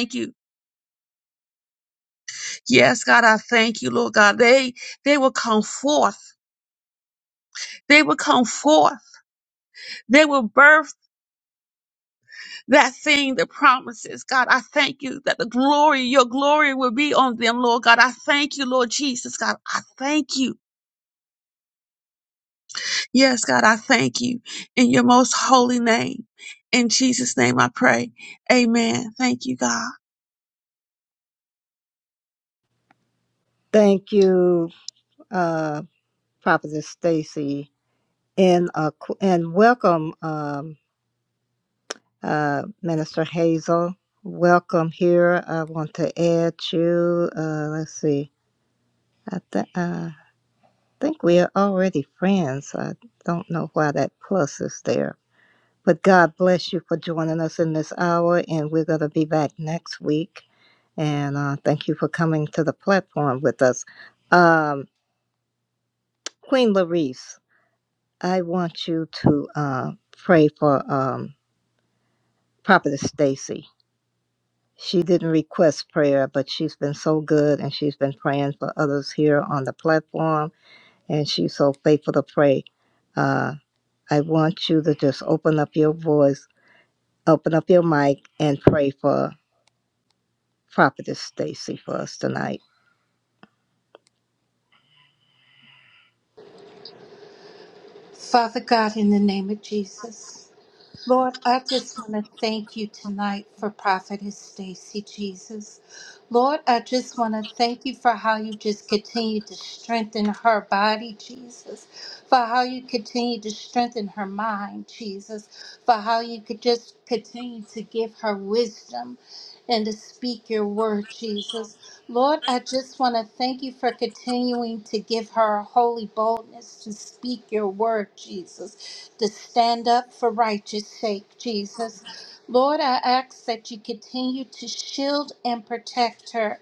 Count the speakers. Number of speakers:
3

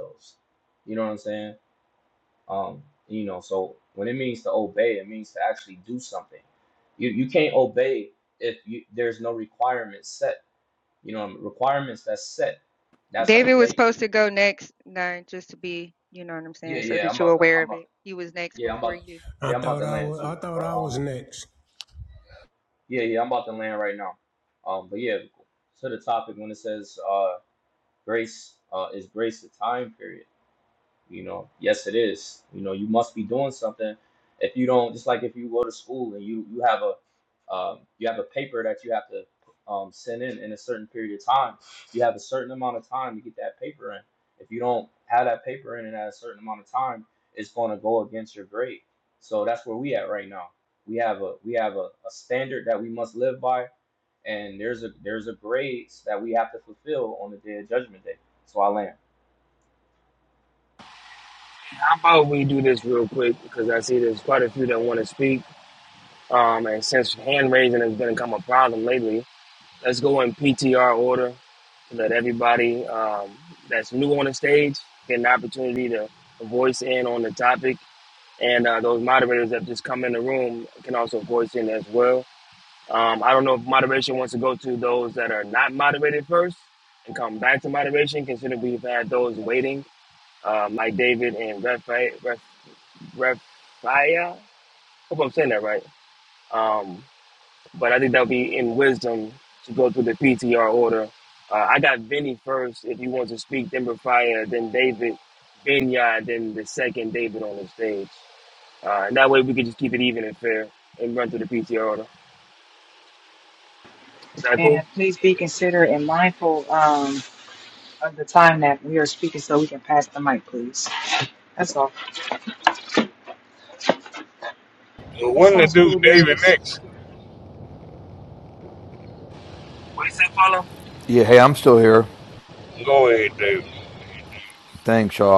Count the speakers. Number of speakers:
7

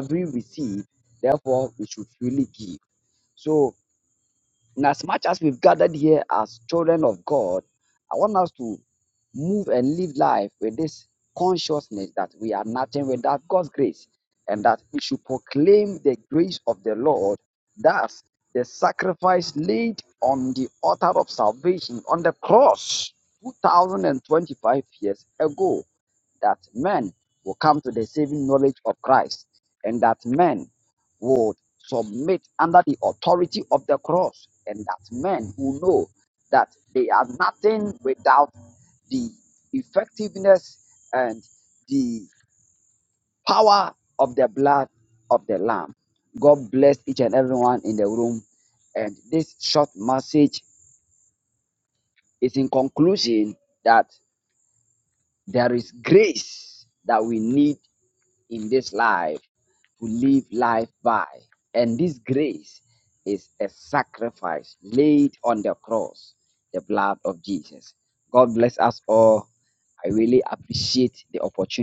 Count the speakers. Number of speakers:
1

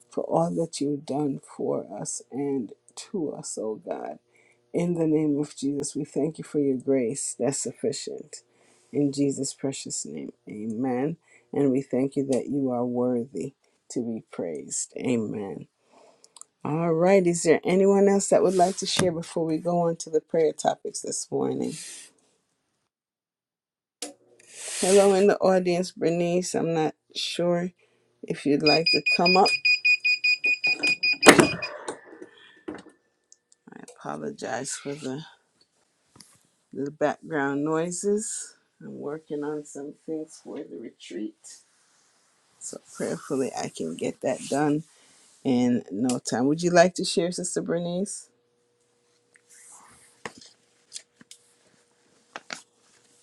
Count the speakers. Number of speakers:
1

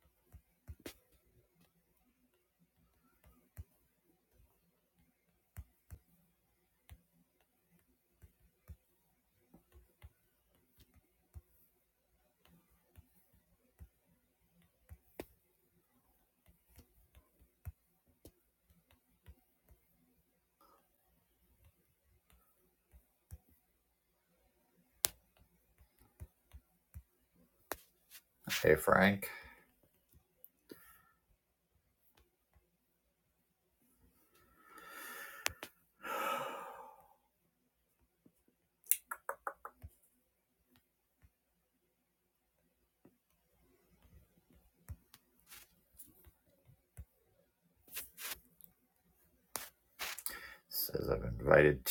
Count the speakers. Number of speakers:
1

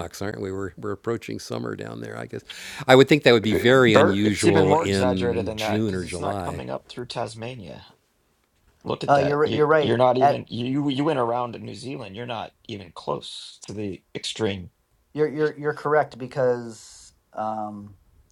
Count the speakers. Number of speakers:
3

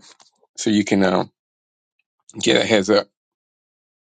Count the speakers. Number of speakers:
1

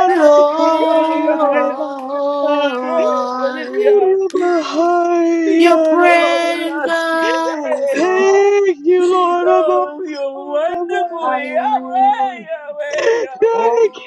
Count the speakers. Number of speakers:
3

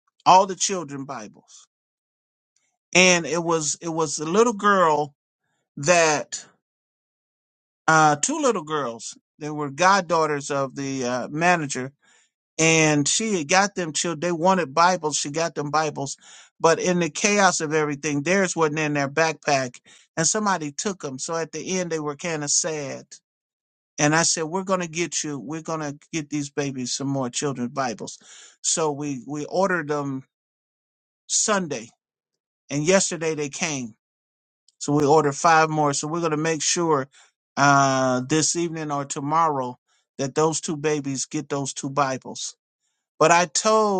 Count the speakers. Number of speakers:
1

